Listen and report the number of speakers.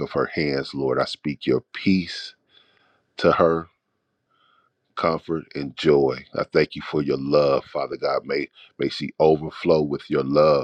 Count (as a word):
one